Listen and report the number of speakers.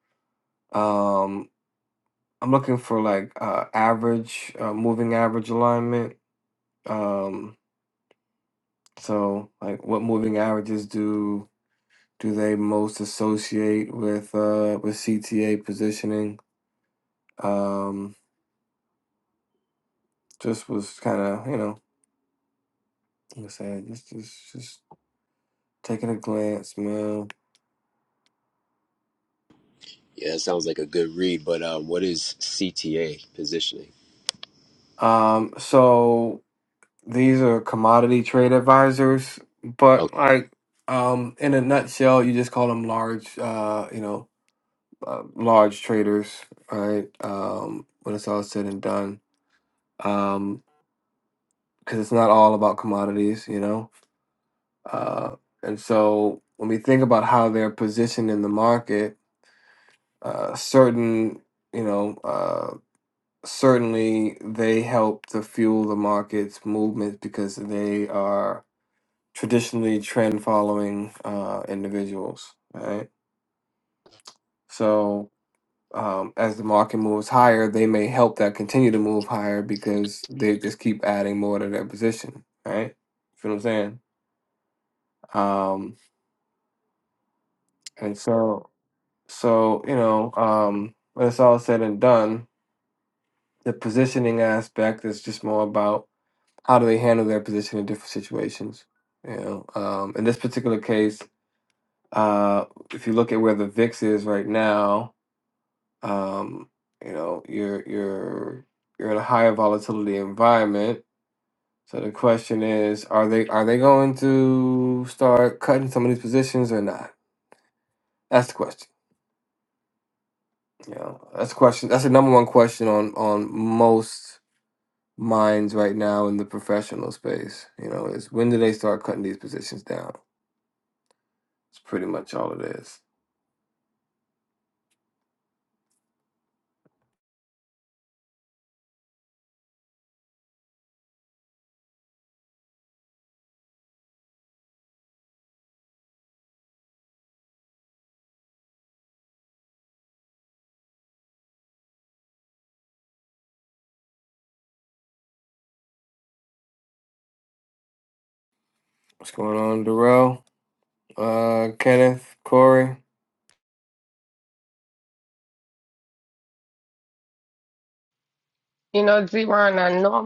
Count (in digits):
3